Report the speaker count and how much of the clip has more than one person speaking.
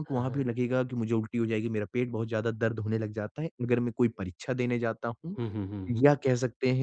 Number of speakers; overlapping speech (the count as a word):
two, about 7%